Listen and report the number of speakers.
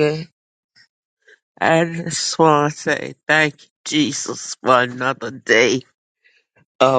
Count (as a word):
one